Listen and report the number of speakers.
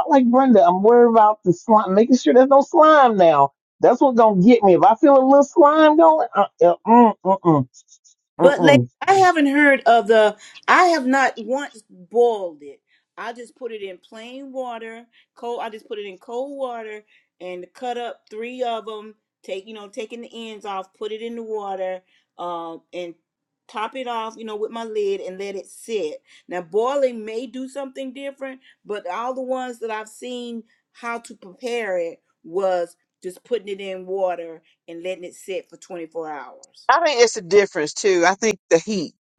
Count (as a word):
three